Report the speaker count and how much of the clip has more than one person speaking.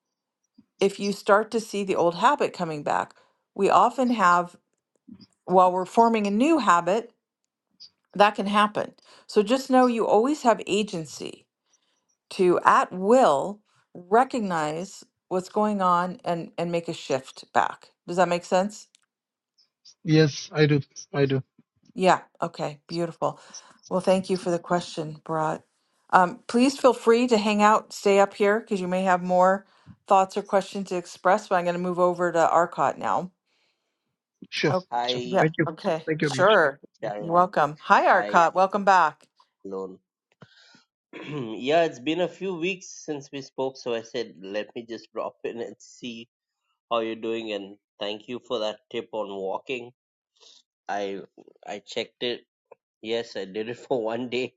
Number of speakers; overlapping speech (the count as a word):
three, about 3%